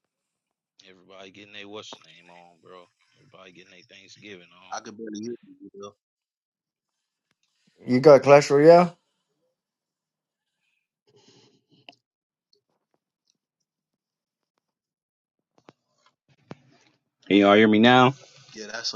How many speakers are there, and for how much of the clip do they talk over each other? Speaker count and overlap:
3, no overlap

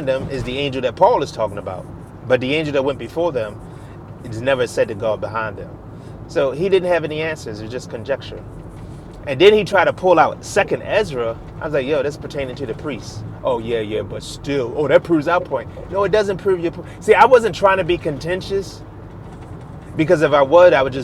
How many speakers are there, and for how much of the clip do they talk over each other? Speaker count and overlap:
1, no overlap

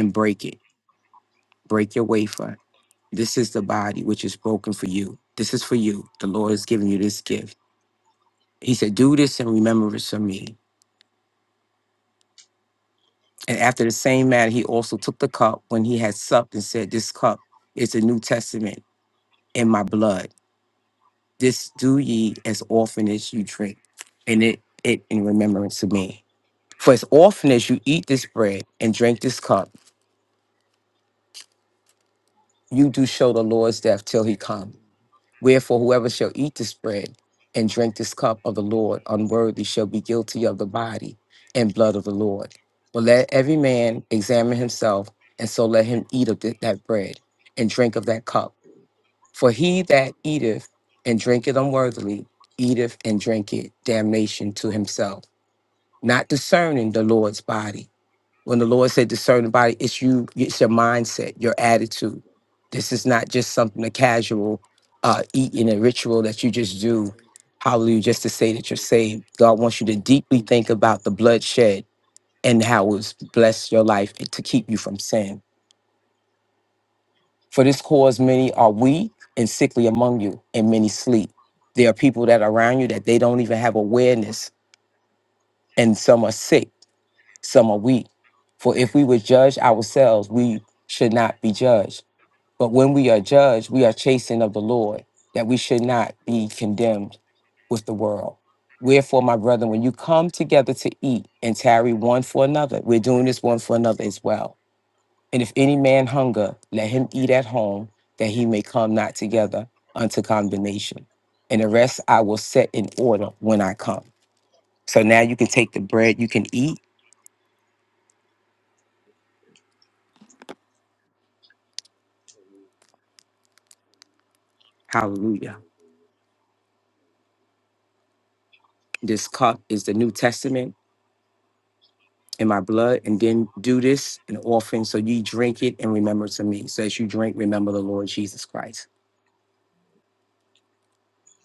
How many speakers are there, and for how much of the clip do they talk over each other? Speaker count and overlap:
1, no overlap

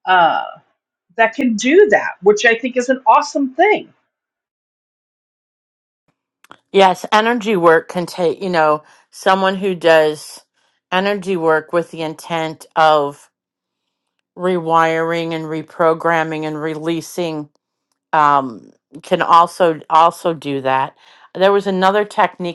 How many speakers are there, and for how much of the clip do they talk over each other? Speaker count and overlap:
2, no overlap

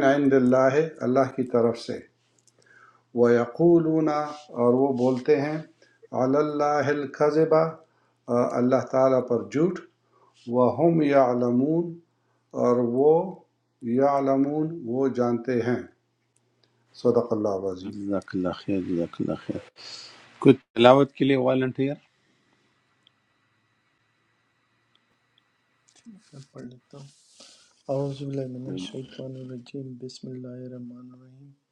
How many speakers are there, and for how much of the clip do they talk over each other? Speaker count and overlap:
3, under 1%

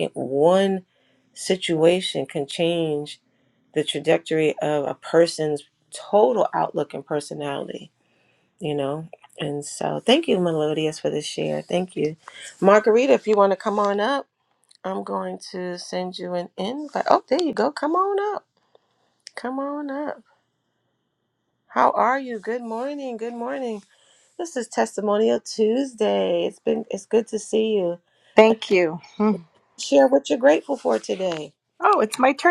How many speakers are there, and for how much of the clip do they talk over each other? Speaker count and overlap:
2, no overlap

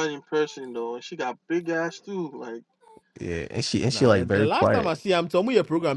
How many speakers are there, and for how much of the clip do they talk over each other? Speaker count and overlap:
3, about 16%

